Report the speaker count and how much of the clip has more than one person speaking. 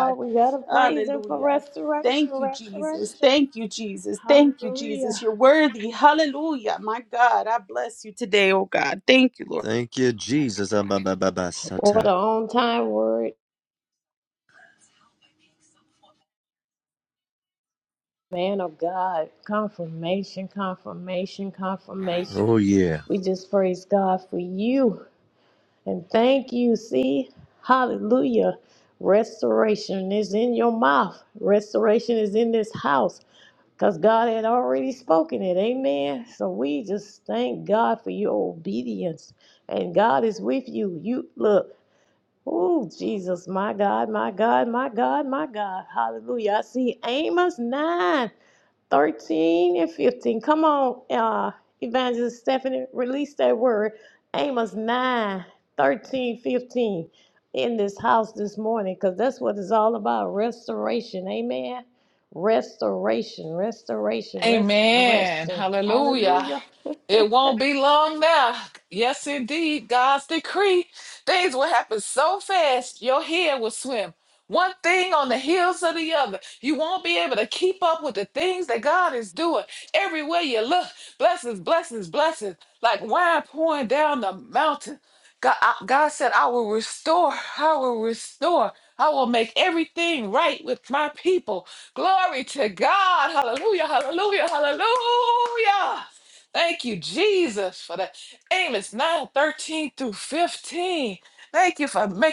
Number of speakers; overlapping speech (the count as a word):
four, about 6%